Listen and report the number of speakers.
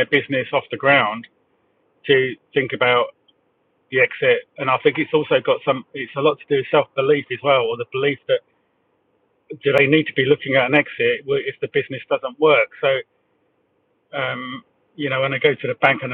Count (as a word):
one